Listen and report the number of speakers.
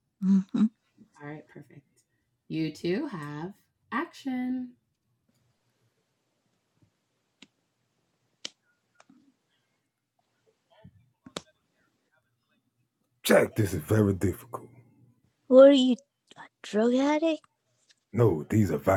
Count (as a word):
three